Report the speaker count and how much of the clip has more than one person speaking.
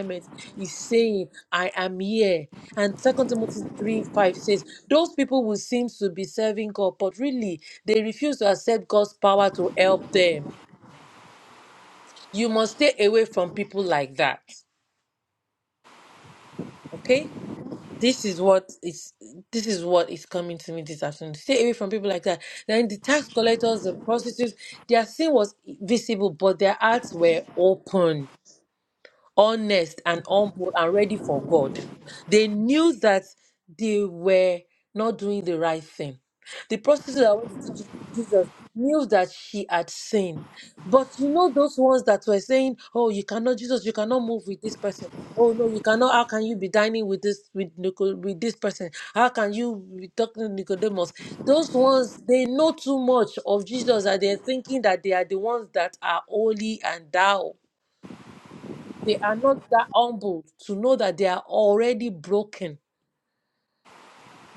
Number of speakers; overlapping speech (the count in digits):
1, no overlap